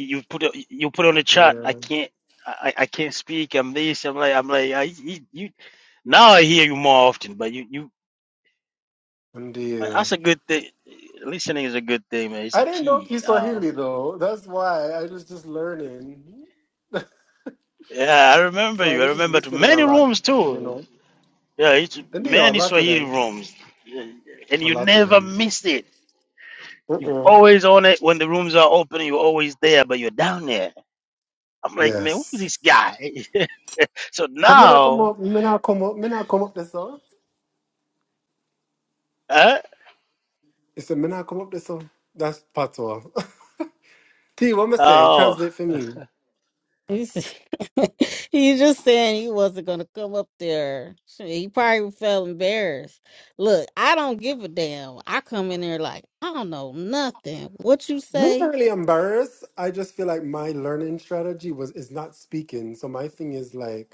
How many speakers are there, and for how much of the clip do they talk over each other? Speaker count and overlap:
3, about 11%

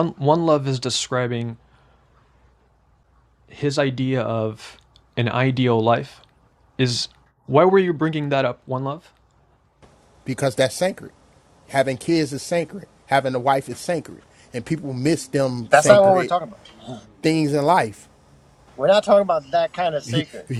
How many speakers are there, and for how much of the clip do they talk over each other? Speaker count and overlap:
3, about 5%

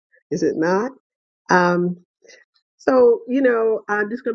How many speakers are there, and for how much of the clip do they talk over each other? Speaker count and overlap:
1, no overlap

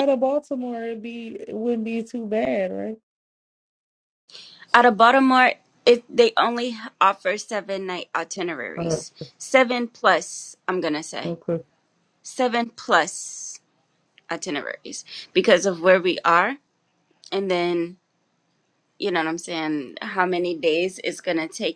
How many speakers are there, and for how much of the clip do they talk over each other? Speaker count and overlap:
2, about 1%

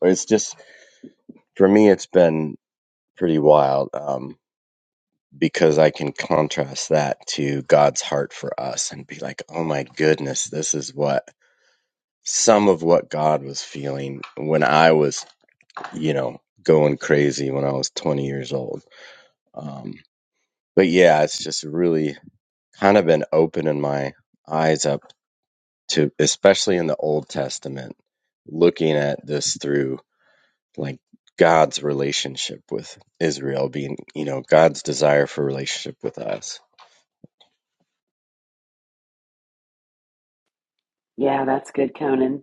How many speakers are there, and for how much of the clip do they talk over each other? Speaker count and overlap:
2, no overlap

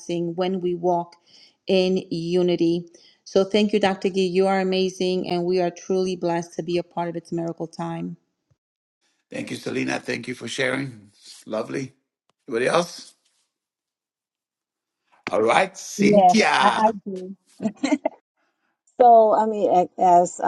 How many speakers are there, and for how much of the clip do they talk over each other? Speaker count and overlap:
3, about 4%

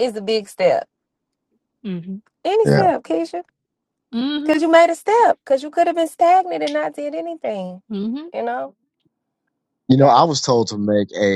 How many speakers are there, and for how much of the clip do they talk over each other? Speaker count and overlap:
3, about 6%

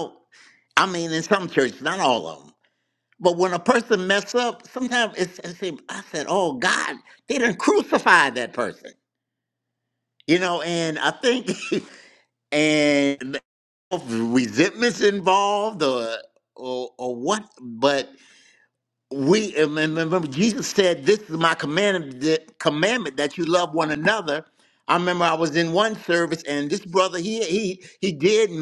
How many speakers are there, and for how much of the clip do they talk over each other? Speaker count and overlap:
1, no overlap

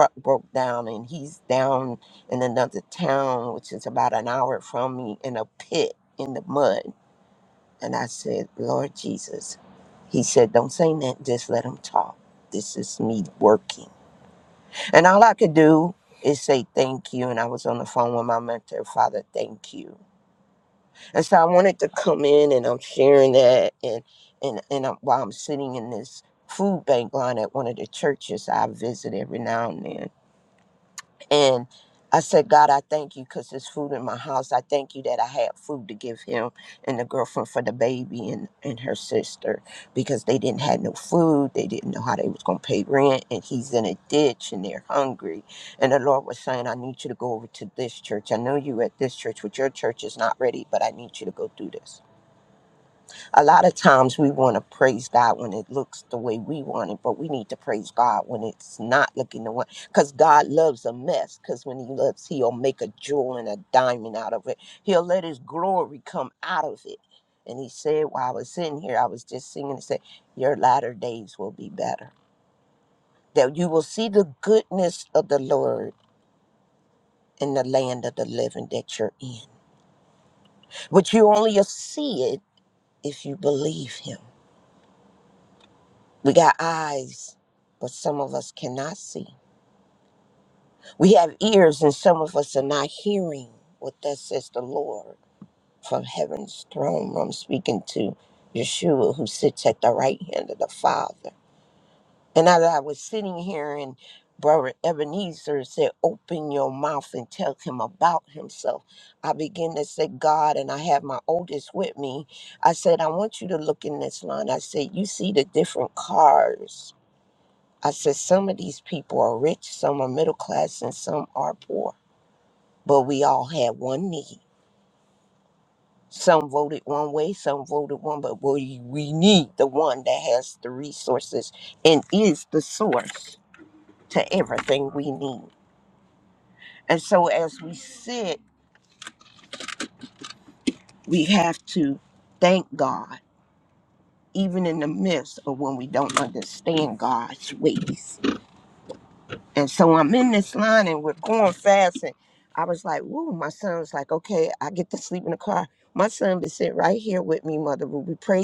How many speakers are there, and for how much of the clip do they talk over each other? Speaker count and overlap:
1, no overlap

